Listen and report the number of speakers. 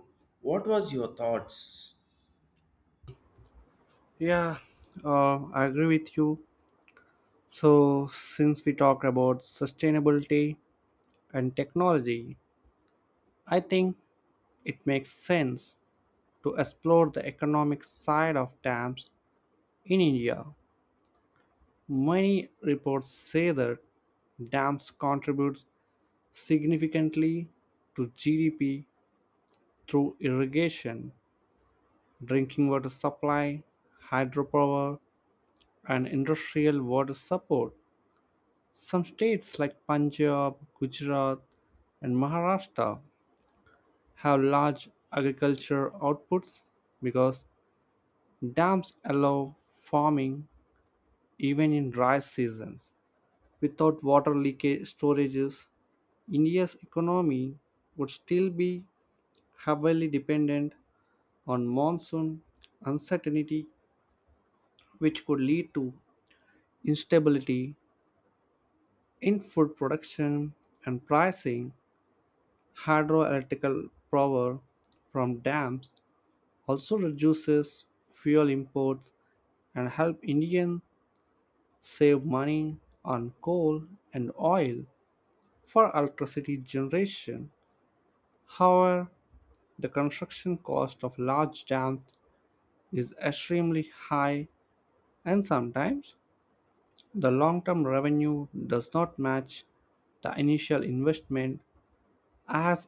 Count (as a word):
two